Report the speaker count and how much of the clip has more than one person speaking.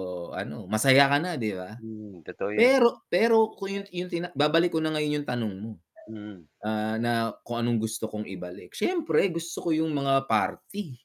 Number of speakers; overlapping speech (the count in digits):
2, about 1%